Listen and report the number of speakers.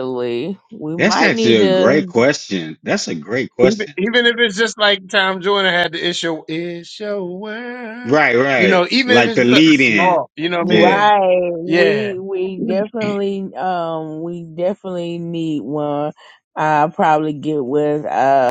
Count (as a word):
three